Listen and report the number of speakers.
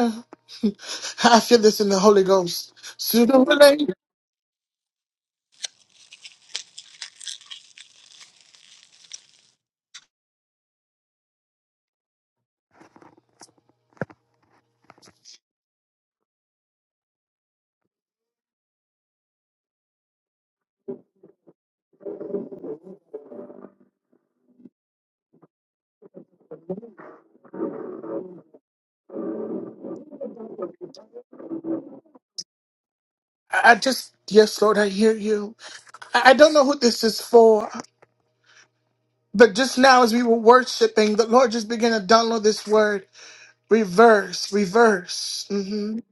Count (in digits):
1